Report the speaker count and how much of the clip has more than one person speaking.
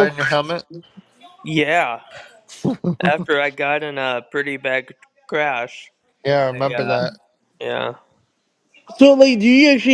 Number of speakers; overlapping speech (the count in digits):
3, about 7%